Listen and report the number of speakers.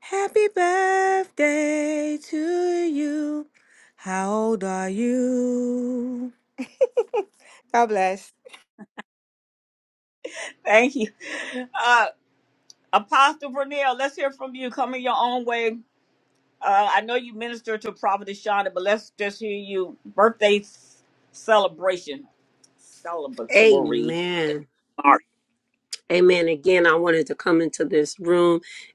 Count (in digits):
3